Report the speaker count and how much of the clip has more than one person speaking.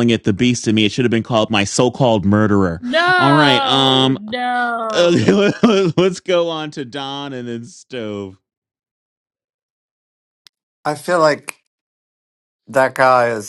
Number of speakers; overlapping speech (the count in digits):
3, about 10%